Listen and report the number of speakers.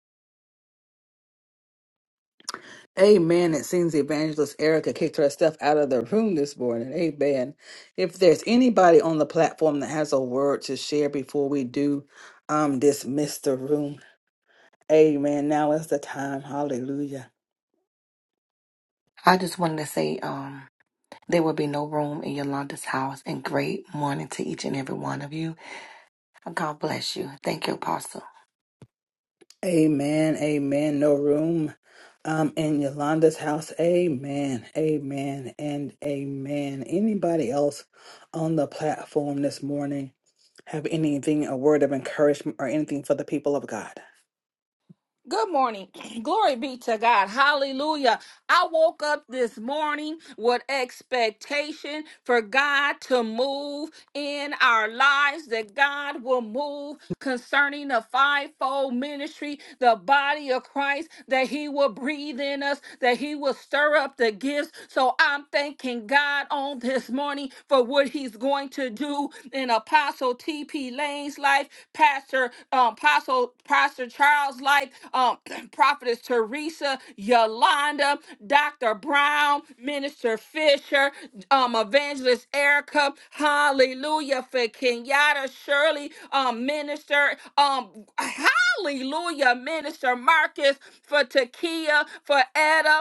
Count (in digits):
3